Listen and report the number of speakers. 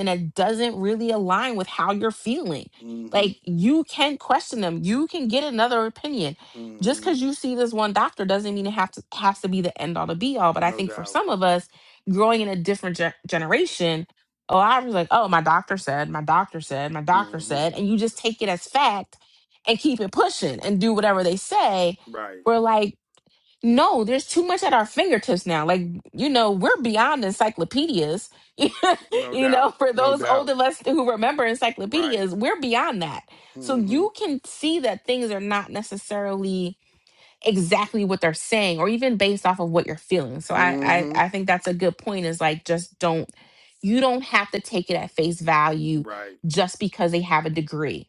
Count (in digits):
2